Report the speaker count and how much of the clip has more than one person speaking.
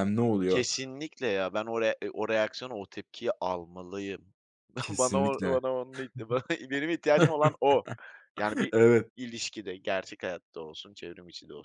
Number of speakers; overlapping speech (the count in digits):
2, about 8%